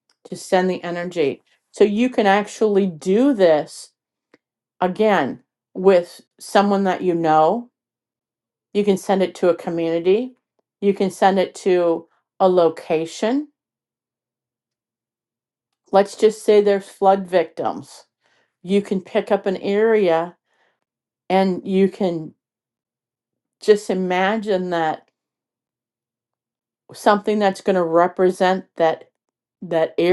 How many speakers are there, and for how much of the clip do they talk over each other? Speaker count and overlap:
one, no overlap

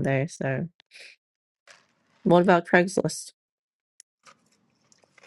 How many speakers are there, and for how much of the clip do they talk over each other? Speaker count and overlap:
one, no overlap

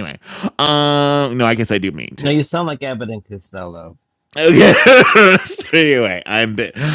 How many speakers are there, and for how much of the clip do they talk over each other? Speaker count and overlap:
two, about 1%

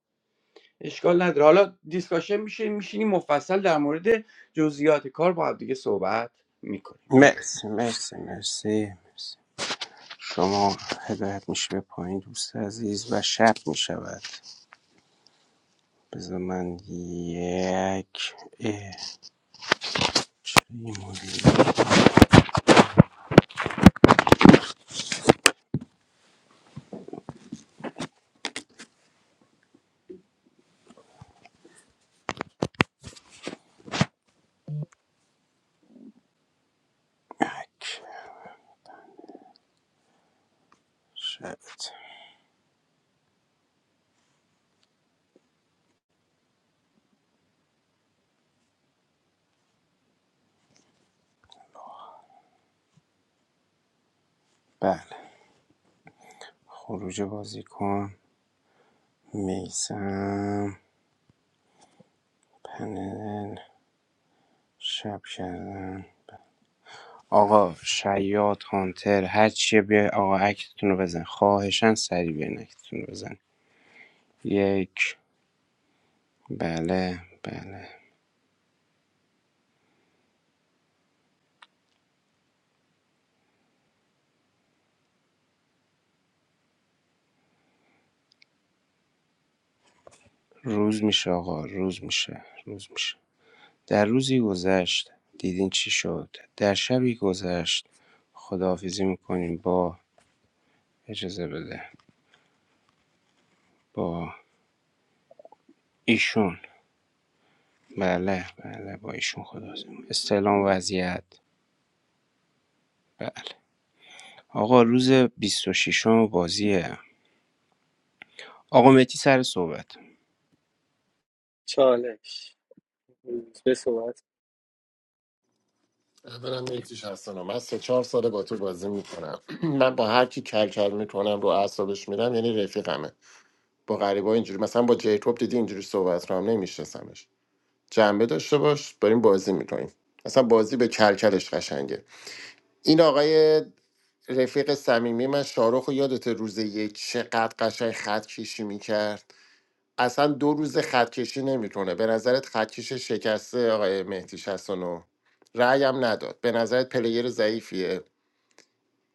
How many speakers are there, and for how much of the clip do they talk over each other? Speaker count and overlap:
four, under 1%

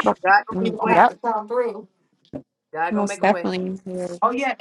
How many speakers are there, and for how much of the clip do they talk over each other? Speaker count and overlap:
three, about 29%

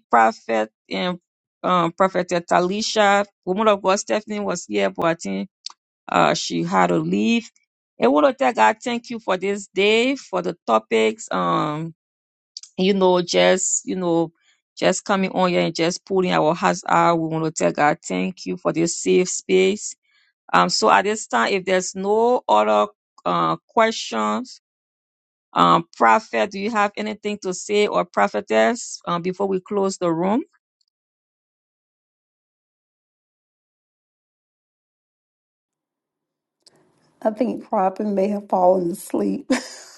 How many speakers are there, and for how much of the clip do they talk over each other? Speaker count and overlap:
two, no overlap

